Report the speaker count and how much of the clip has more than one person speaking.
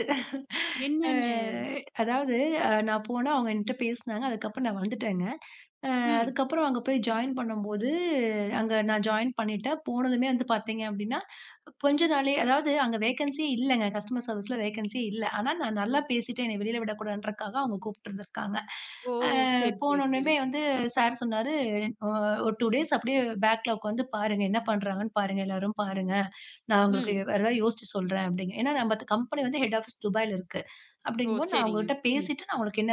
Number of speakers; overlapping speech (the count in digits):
2, about 7%